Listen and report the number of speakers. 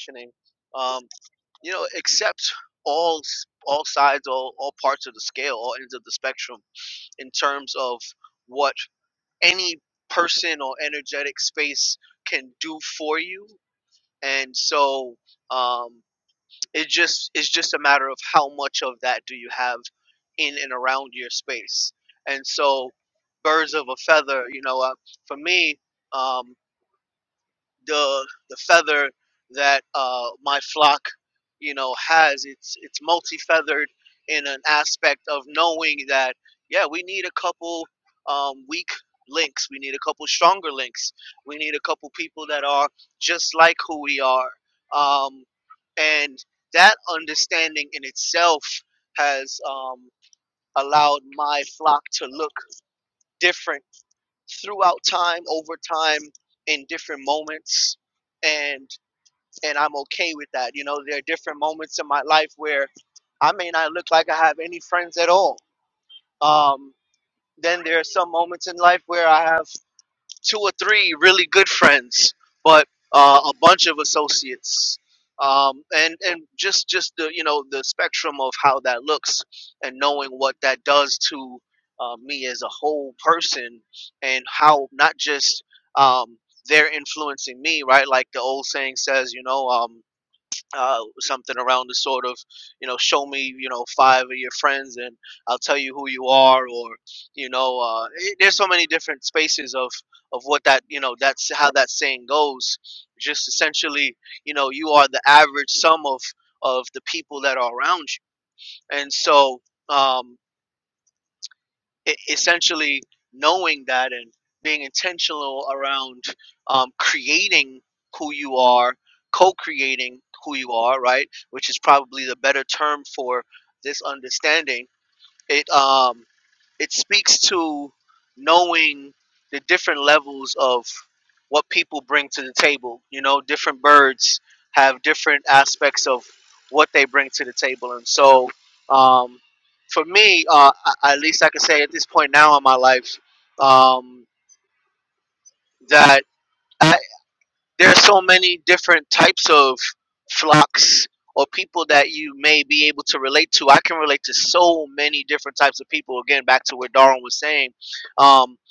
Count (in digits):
1